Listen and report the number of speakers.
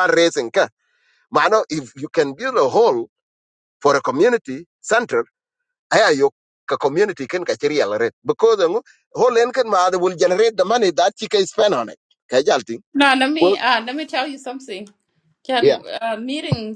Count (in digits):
2